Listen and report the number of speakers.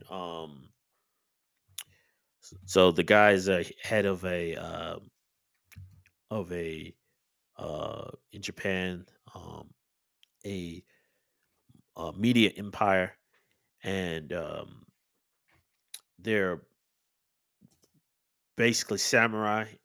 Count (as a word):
one